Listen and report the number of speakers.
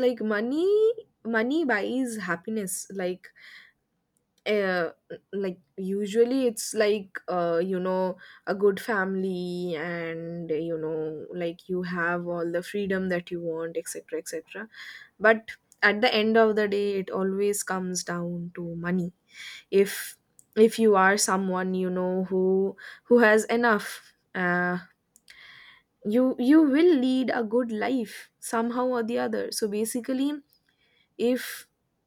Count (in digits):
1